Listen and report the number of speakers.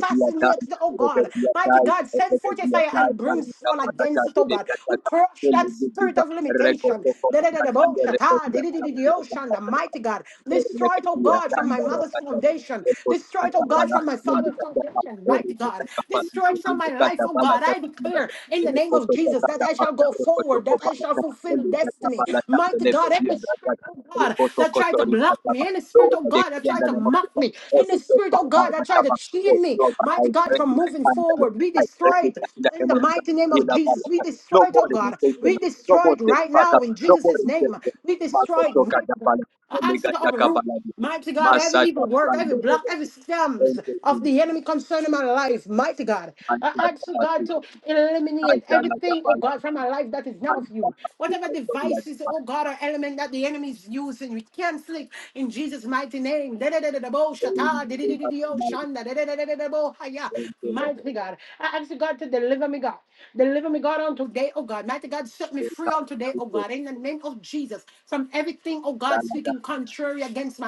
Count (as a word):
two